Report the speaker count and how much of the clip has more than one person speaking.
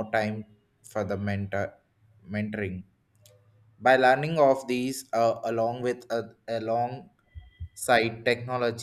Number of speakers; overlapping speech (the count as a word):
one, no overlap